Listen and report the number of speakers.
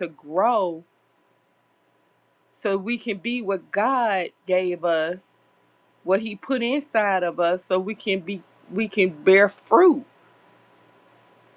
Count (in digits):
1